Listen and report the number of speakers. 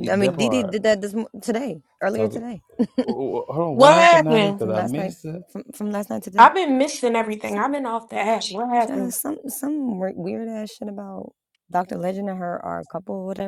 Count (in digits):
3